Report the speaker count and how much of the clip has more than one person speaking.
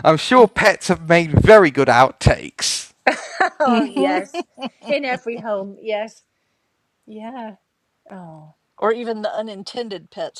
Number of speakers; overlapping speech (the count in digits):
3, about 6%